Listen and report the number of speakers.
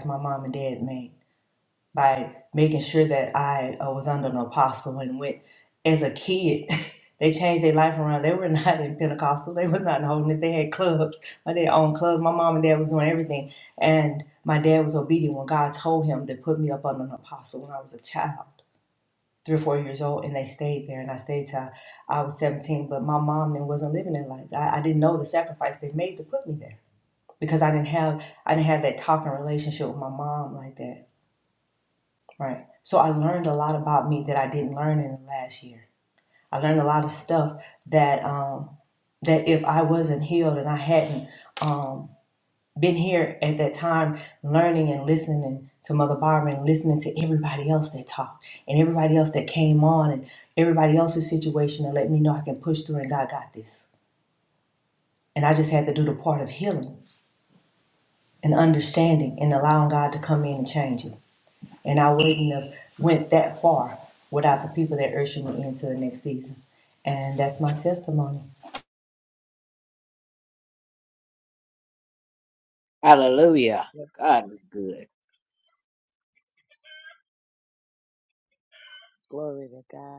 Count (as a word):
three